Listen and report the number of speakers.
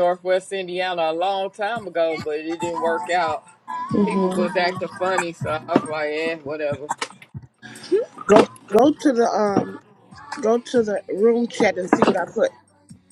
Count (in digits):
2